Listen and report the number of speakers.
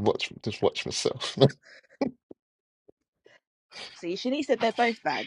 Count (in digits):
2